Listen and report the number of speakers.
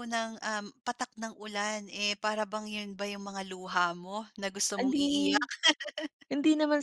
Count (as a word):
two